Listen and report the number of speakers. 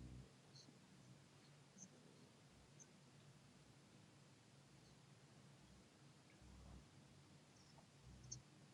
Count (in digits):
0